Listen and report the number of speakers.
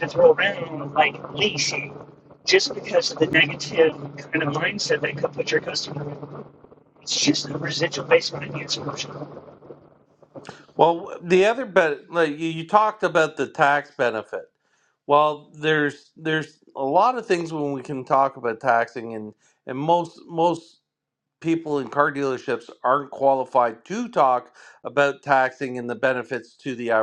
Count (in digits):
2